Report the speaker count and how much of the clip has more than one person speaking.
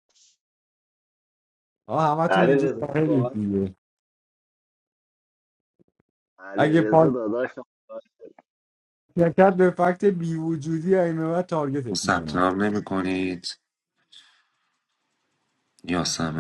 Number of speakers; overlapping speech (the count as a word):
three, about 10%